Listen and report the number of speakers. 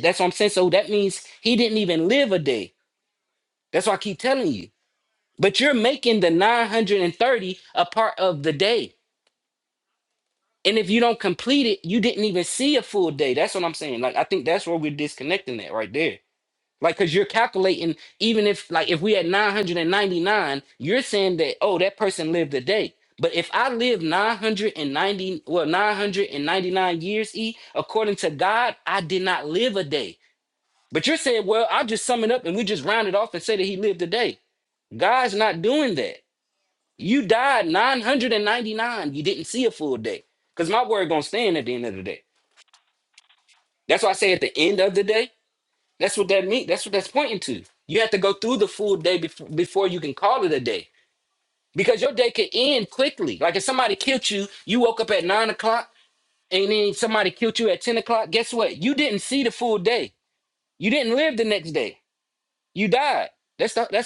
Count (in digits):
1